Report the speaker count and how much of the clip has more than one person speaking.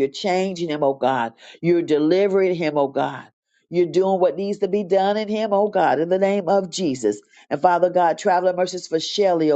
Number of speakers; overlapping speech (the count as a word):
one, no overlap